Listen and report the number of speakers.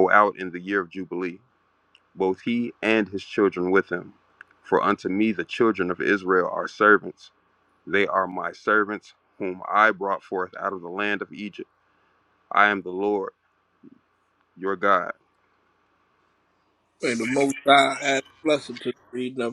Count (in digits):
2